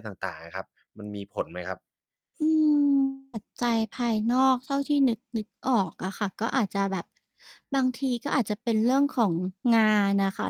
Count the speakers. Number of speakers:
2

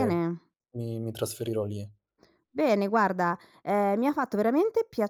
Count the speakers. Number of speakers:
2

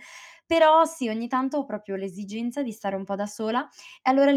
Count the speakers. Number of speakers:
1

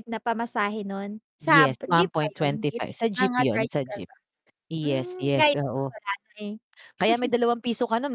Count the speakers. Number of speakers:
2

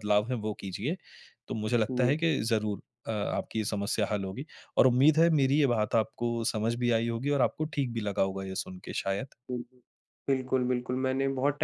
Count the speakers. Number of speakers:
2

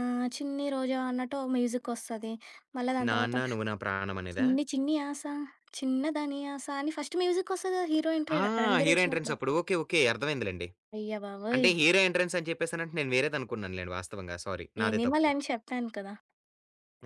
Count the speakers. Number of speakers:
2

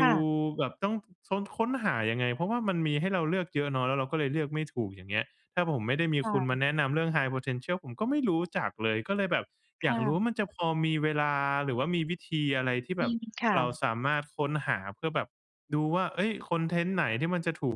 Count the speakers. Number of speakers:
2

